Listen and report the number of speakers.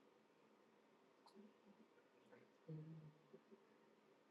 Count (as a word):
zero